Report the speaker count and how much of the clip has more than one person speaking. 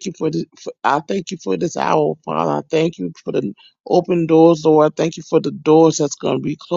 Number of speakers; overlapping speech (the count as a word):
one, no overlap